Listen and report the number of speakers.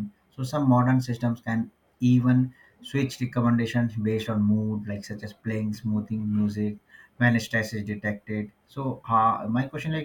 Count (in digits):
1